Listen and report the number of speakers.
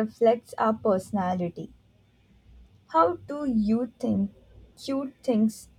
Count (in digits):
1